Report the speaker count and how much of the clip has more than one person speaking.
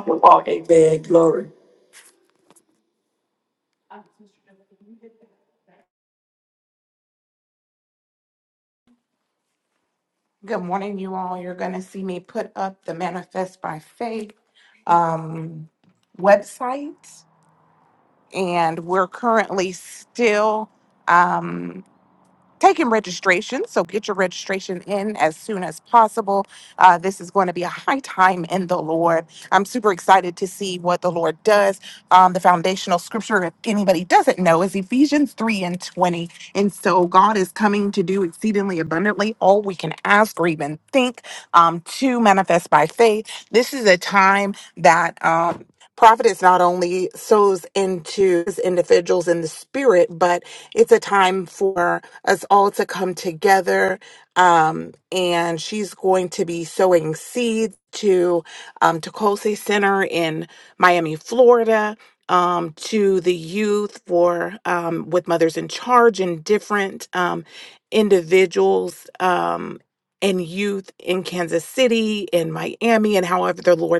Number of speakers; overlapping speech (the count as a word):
two, no overlap